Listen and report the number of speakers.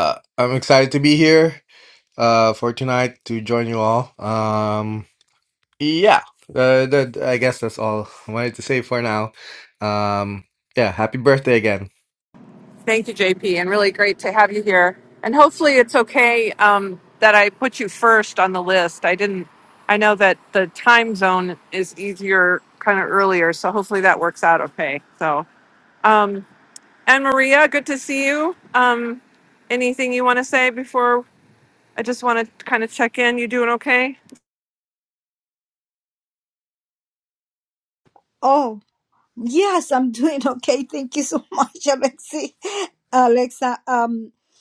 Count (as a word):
three